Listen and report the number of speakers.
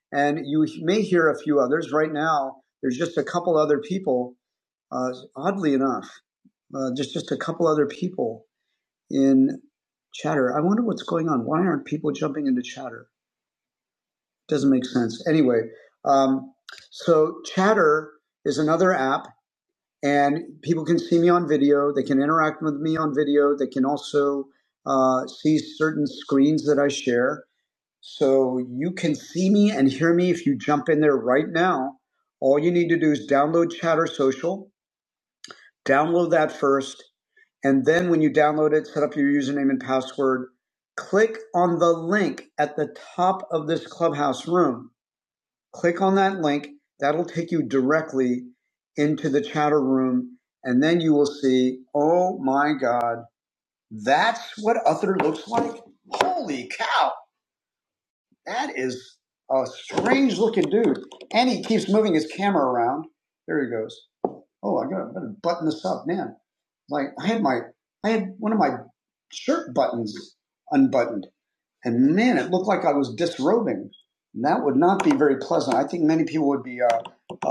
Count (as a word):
one